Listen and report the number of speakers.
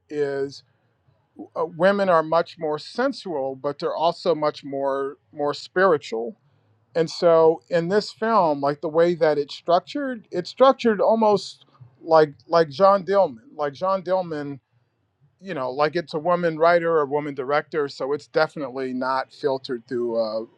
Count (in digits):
1